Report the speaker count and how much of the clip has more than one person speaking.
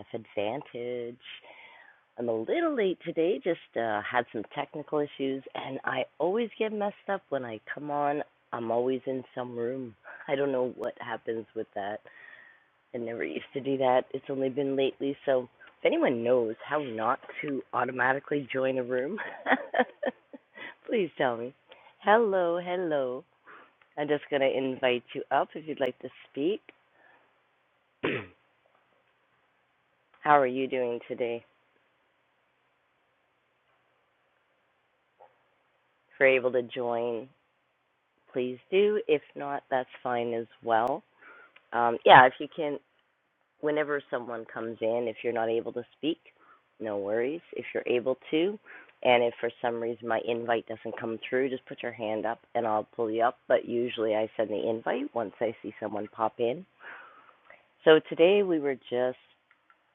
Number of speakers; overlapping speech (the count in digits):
1, no overlap